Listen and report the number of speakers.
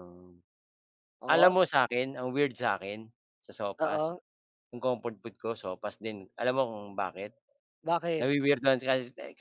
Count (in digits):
2